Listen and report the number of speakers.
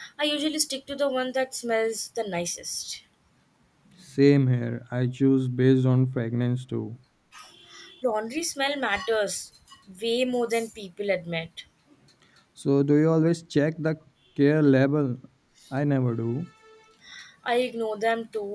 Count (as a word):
two